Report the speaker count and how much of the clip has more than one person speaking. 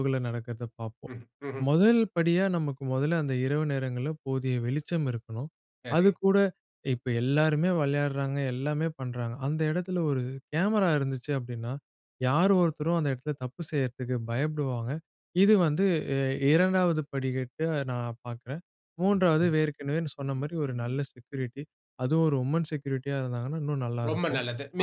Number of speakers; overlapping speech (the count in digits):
2, about 3%